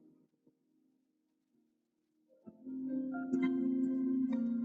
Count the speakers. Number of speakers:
zero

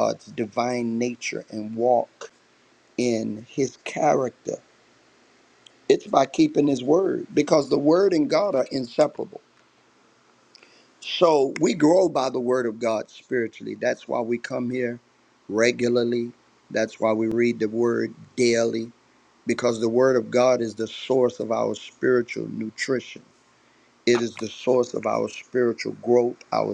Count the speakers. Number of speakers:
one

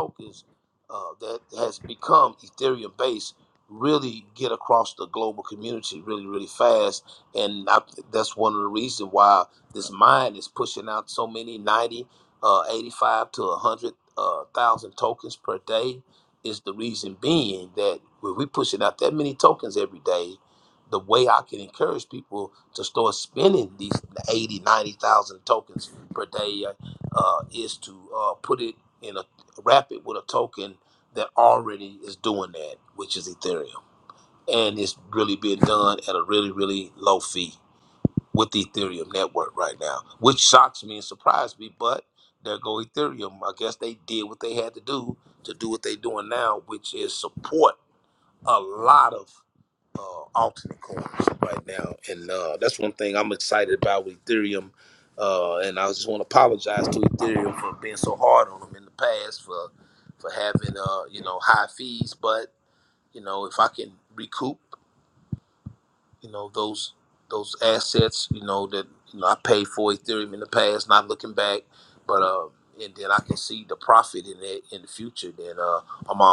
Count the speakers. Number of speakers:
one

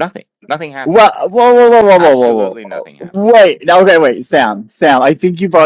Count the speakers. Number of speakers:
two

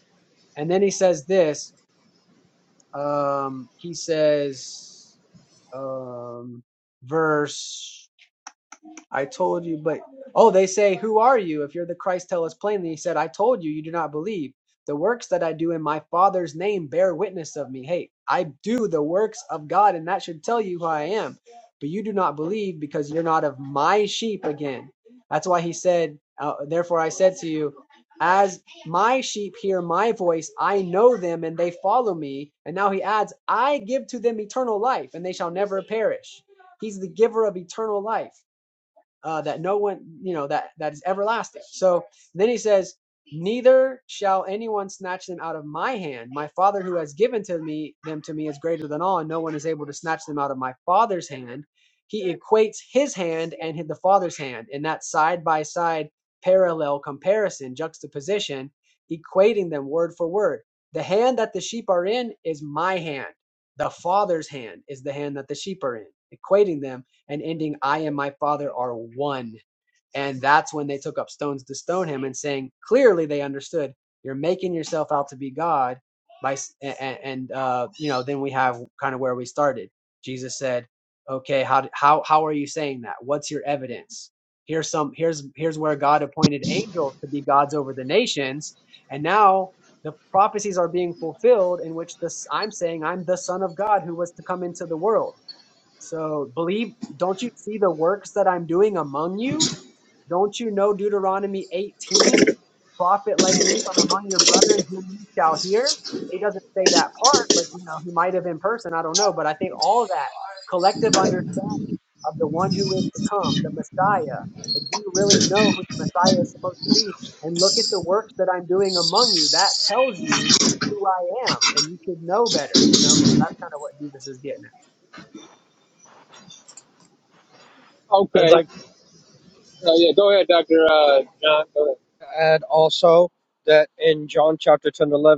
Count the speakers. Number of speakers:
three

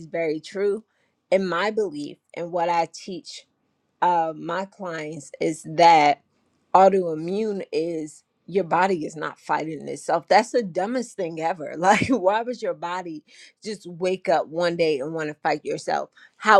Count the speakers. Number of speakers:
one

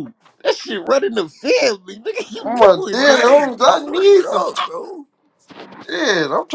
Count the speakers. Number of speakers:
three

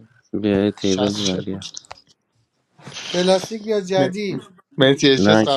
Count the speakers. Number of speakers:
three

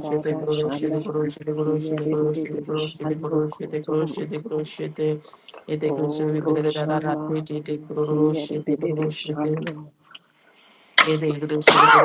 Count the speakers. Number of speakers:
two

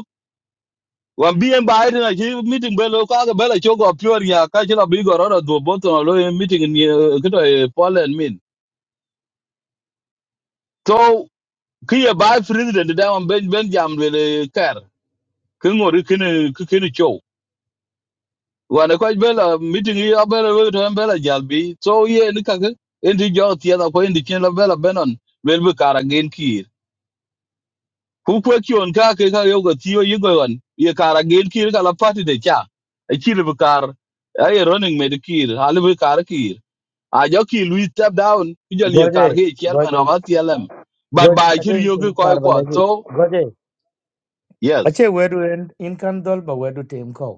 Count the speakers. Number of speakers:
two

